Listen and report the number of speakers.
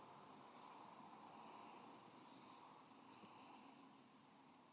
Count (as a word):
zero